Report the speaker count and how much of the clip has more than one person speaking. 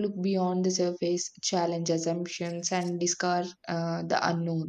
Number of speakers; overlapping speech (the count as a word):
one, no overlap